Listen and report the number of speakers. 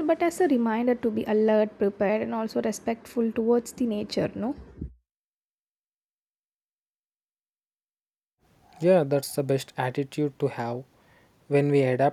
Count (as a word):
two